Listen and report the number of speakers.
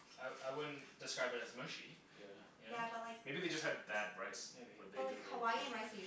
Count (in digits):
3